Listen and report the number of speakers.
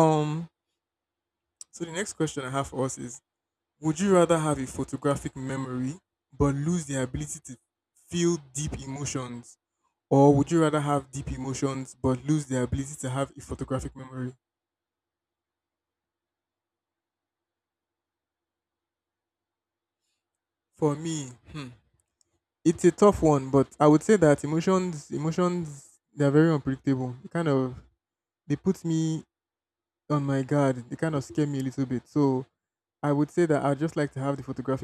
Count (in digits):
1